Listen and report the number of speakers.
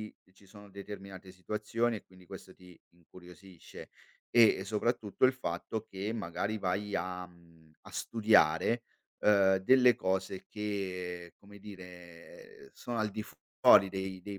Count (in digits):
1